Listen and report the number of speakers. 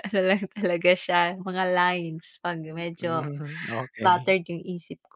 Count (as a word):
two